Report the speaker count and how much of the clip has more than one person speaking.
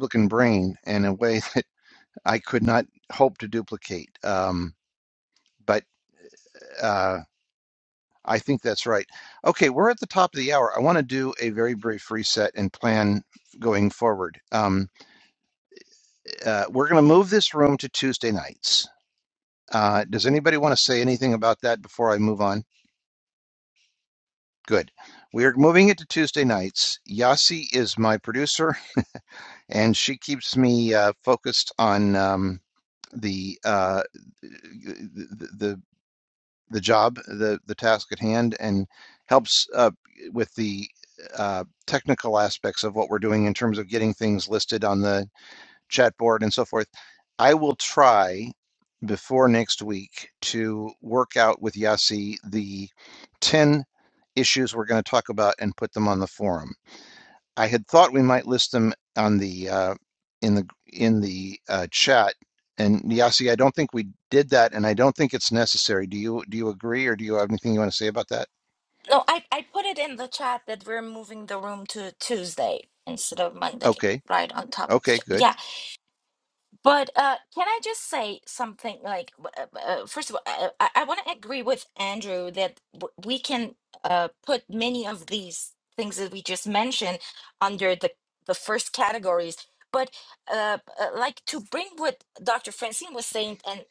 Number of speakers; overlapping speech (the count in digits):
2, about 1%